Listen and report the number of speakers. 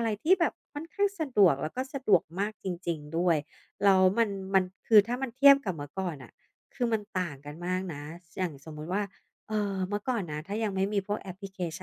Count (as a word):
one